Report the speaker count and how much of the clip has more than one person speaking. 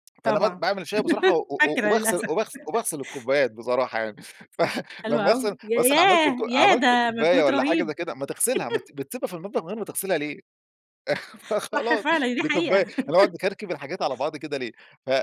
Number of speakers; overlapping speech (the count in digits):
2, about 31%